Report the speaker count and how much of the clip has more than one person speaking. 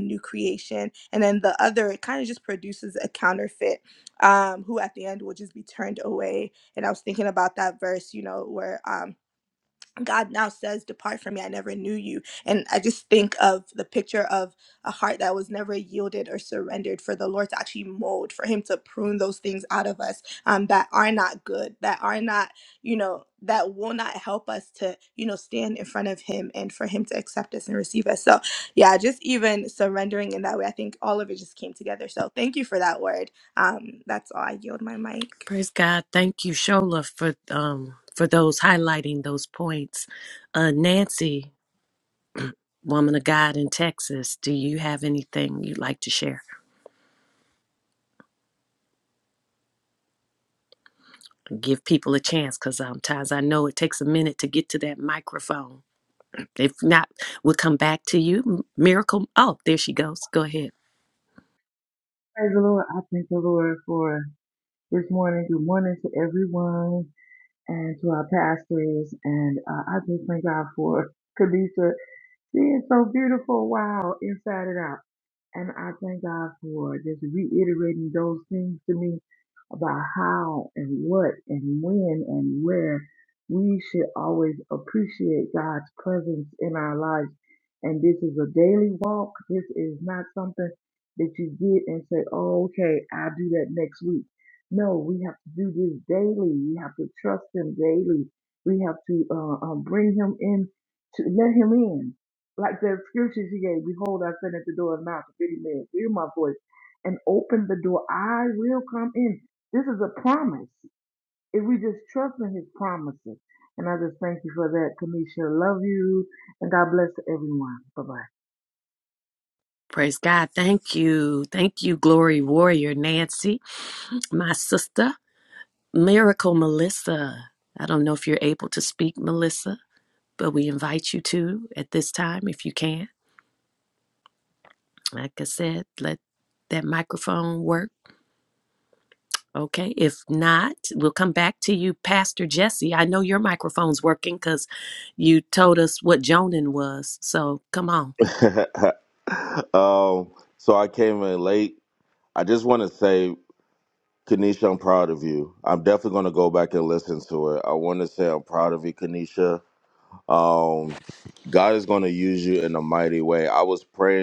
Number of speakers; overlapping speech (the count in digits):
4, no overlap